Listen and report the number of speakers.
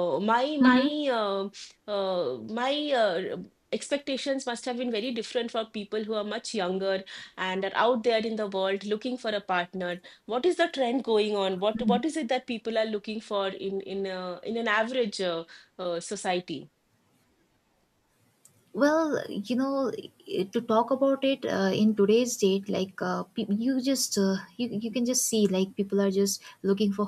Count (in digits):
2